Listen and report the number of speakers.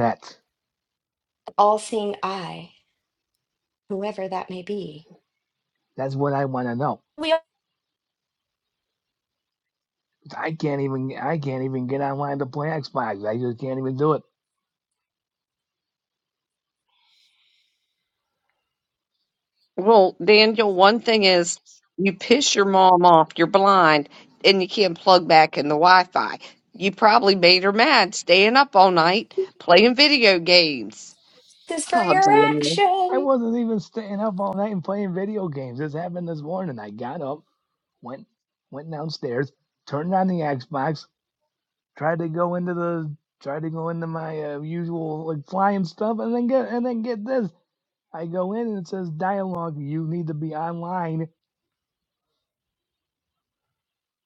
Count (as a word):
three